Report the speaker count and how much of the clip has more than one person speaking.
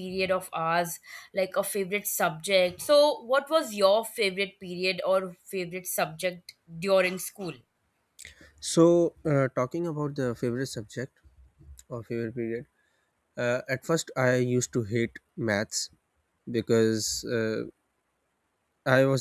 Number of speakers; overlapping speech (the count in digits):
2, no overlap